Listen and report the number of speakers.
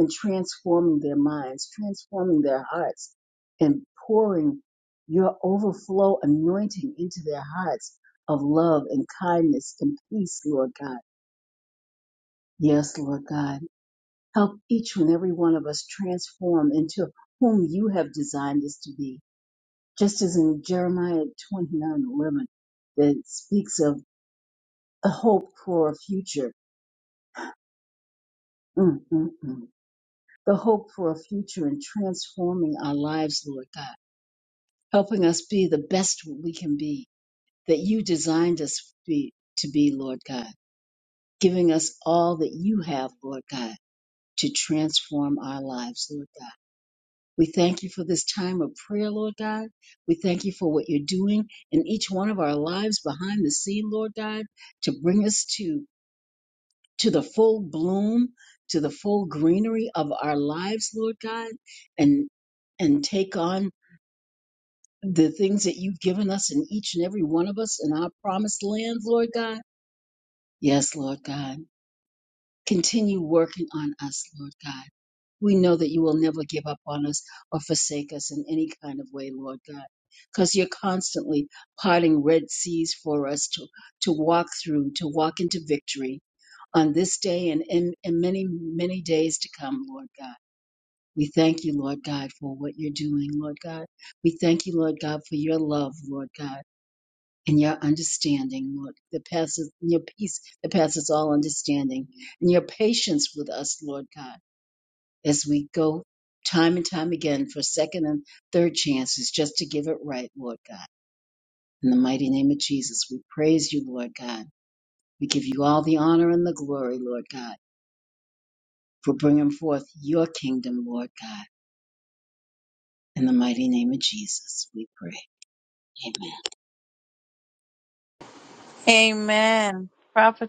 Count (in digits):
2